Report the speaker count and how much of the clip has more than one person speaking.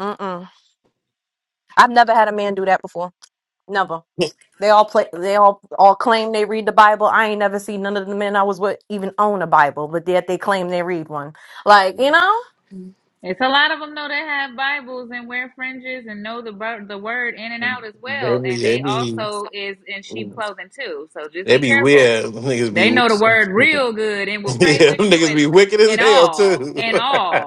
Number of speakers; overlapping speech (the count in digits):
3, about 14%